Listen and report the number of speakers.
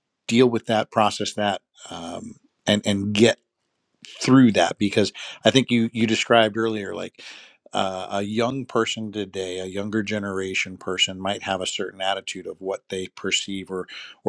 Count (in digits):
1